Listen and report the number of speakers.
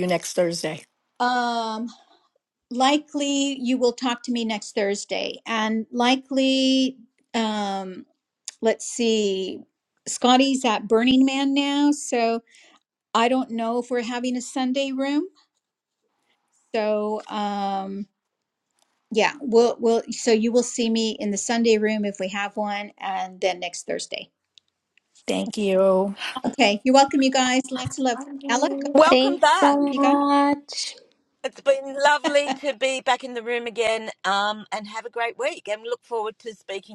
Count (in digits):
4